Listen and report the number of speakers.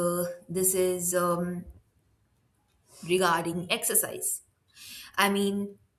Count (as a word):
one